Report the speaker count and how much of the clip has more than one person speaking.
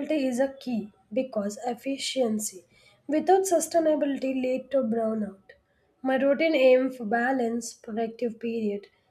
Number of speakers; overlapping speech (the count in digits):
1, no overlap